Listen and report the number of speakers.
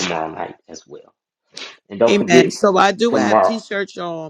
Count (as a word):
two